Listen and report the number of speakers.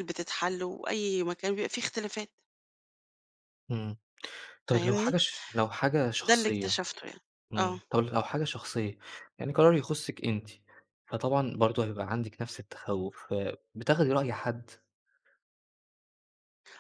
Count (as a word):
two